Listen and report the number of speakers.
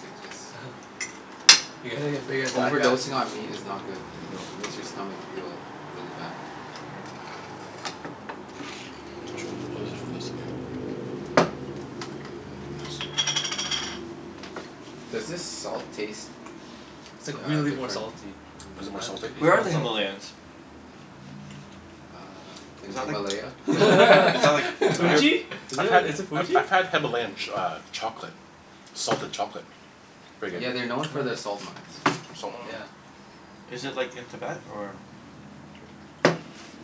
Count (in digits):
4